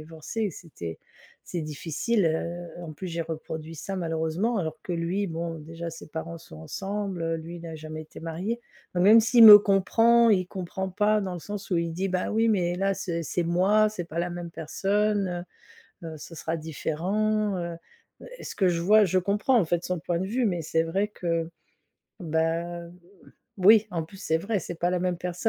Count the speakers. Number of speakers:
one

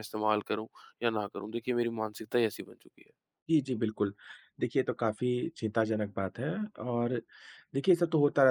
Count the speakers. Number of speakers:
two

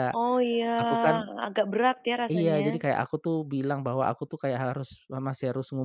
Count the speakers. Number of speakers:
two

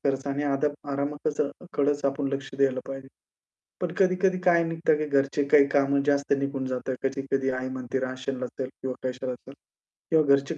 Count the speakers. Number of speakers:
one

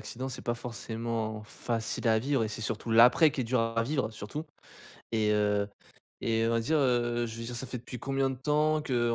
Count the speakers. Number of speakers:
one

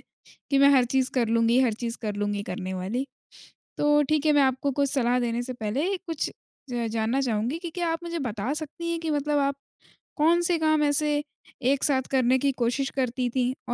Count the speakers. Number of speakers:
one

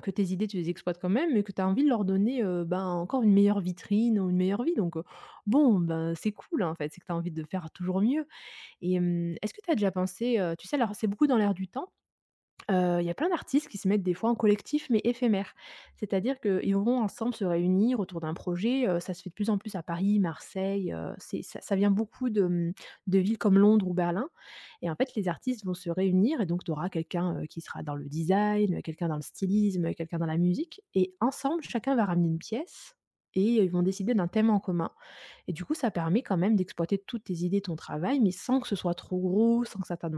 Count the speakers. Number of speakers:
one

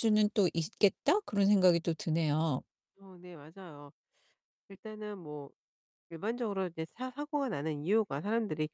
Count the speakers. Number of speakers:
two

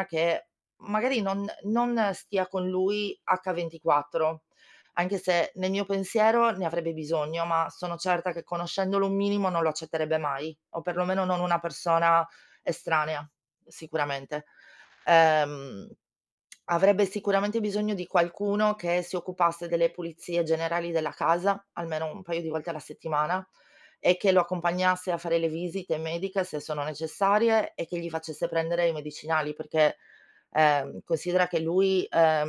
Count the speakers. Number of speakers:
one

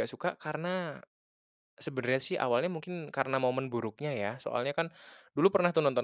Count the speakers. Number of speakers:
one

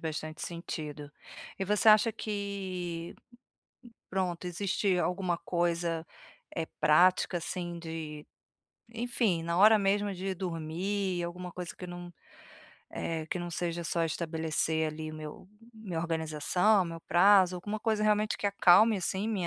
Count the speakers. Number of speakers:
one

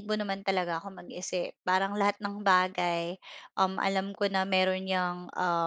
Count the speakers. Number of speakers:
one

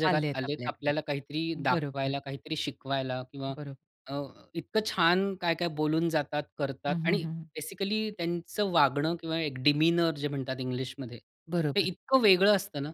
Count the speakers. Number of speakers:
two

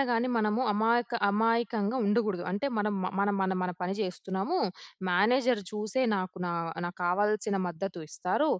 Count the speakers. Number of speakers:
one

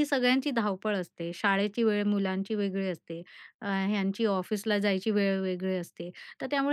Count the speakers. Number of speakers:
one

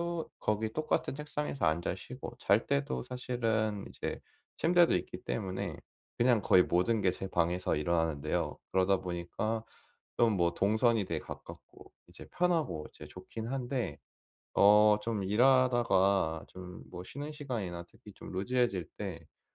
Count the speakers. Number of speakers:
one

